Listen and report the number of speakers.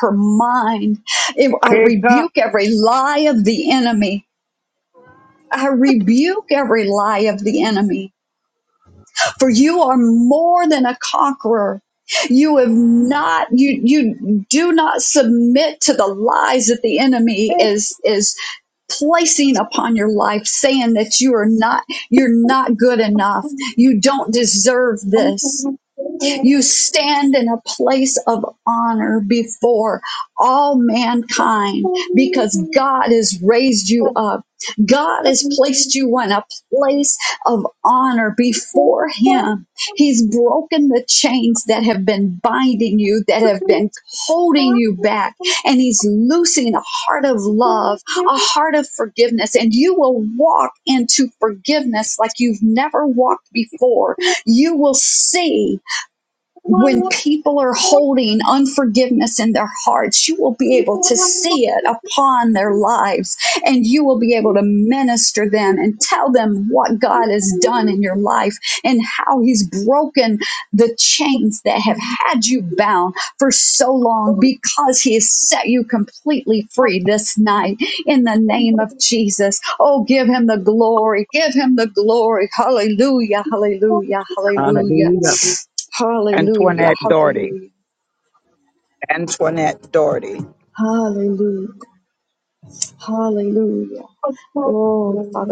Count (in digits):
2